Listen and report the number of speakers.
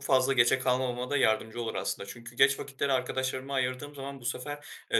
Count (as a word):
one